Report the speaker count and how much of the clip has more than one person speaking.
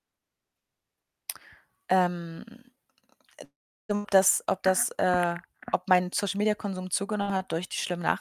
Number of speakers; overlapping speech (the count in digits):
1, no overlap